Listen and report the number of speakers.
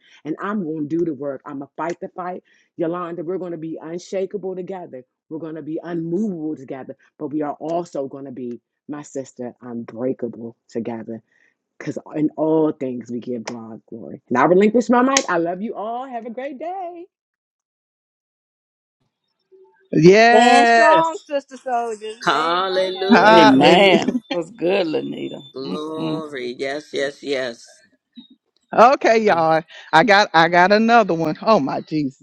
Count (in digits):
5